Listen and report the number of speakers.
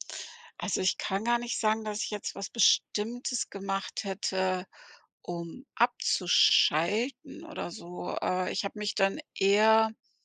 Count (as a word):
one